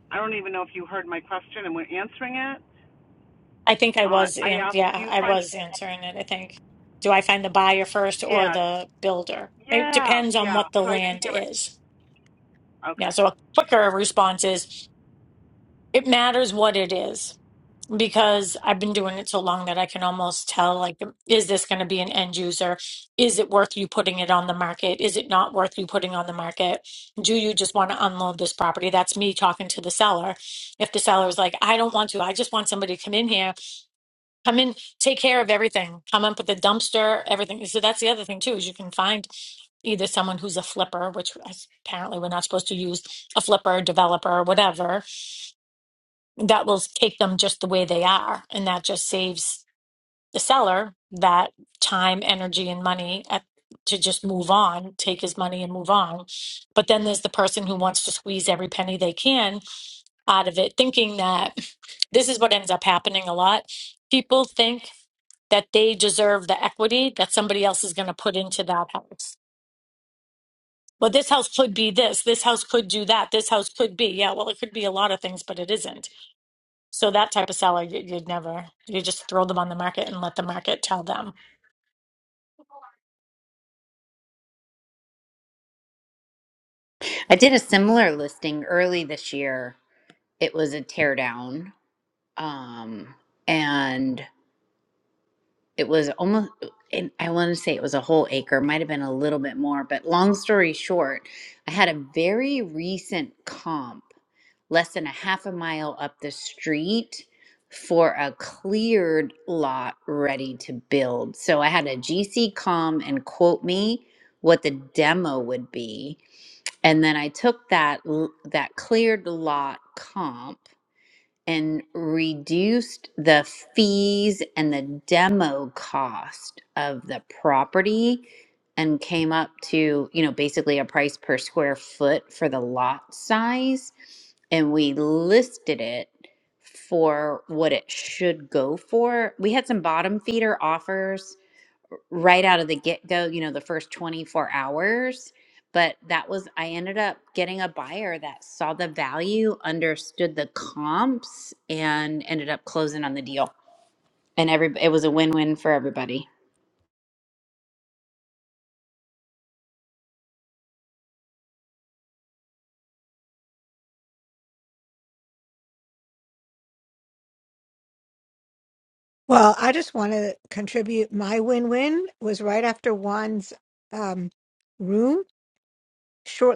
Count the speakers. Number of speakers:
4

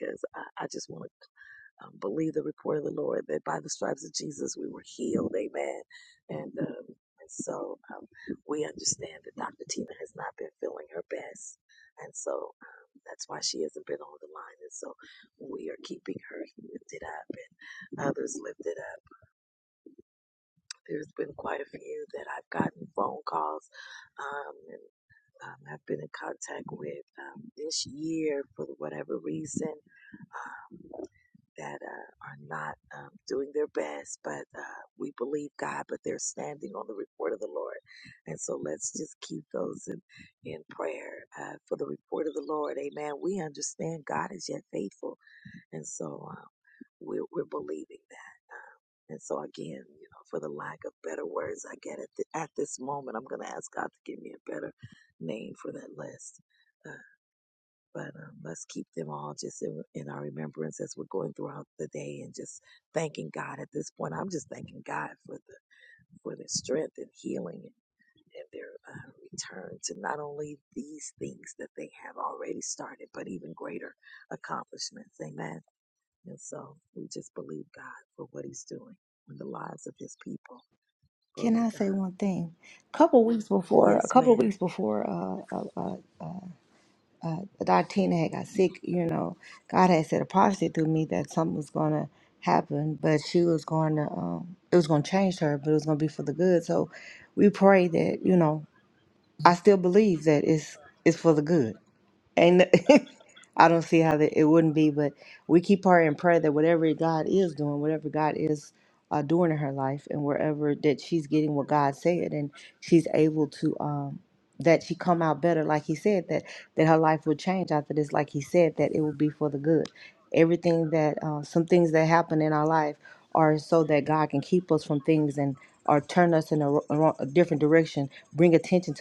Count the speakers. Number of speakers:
2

